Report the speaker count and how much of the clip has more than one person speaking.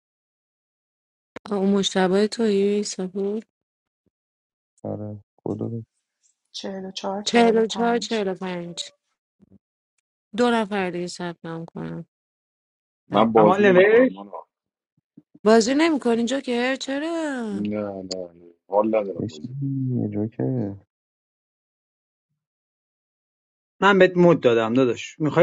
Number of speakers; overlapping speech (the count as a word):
five, about 7%